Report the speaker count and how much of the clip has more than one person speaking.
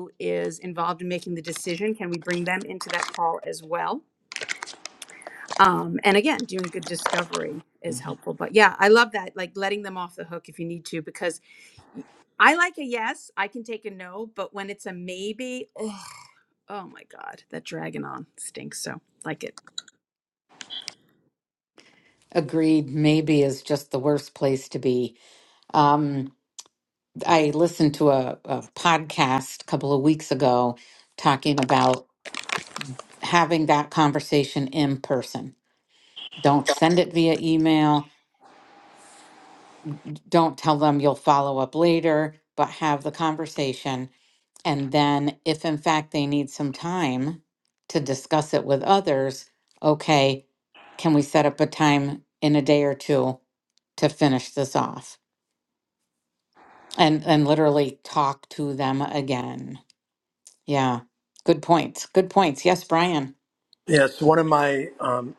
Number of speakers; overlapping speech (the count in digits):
3, no overlap